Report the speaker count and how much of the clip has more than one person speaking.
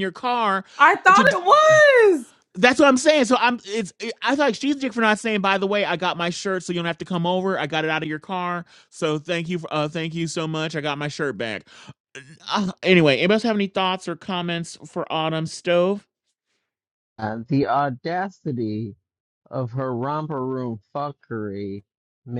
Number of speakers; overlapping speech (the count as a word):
three, about 1%